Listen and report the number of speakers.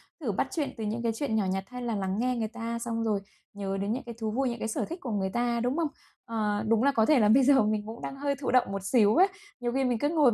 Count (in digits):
1